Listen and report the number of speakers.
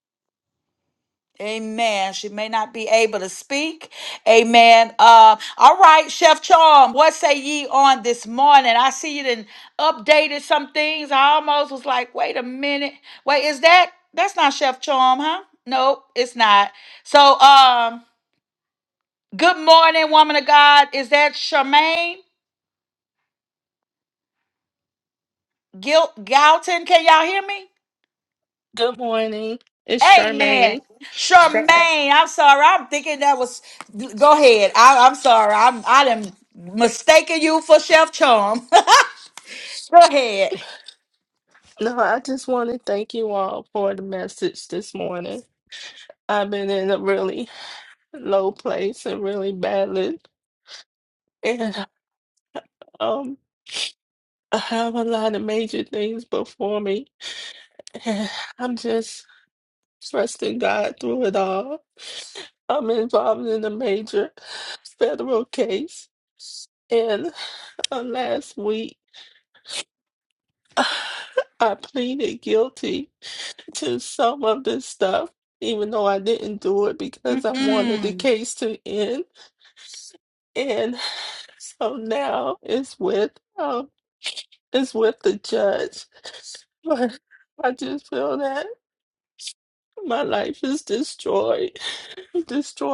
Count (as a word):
two